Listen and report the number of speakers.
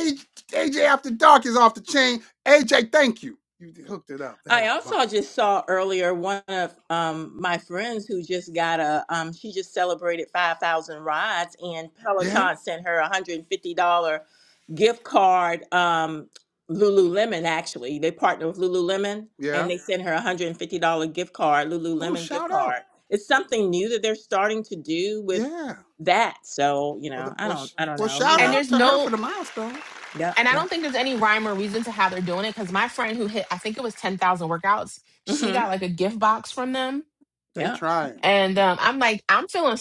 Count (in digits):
3